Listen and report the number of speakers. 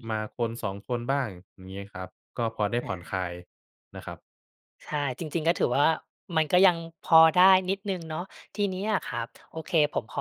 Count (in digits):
2